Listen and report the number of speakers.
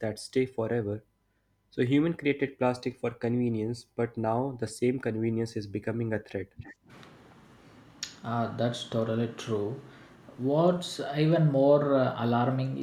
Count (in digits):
2